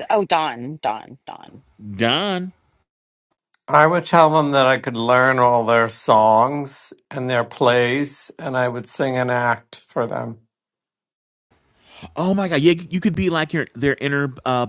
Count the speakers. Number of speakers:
three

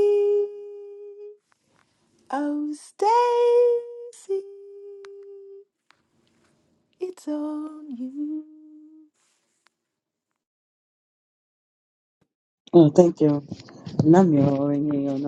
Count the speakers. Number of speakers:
two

